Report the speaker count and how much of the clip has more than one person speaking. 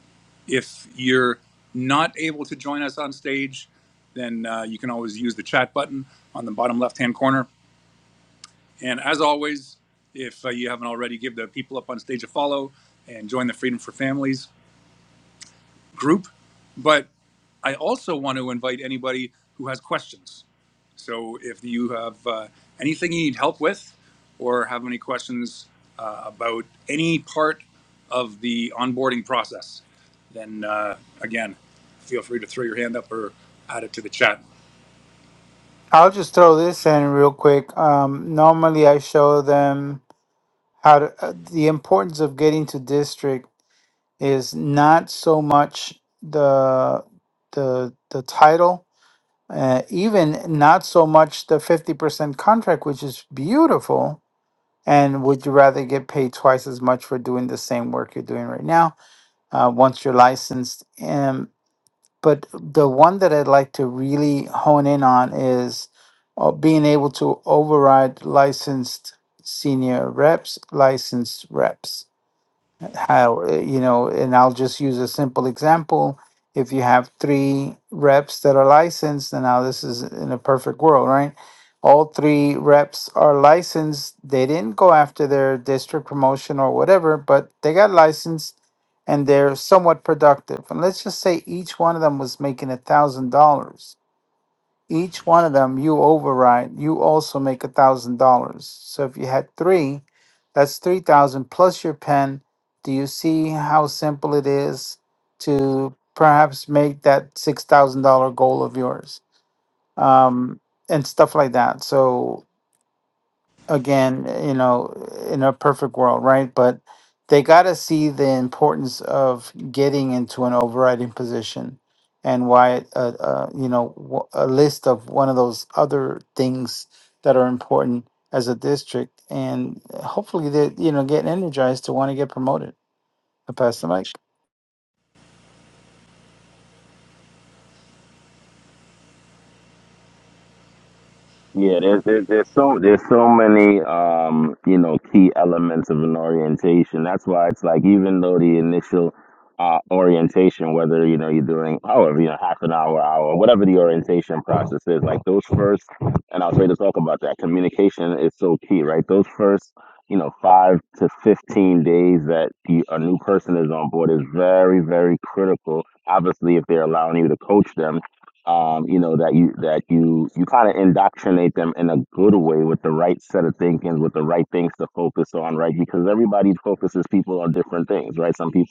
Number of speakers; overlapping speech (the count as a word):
three, no overlap